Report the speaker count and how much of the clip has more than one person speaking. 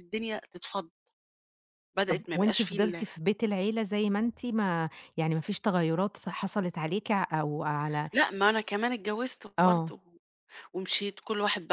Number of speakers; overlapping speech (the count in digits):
2, about 11%